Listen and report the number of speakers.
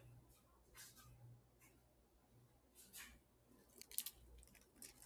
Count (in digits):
0